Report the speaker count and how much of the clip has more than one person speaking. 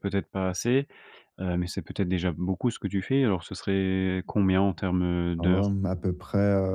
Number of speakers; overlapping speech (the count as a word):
two, about 4%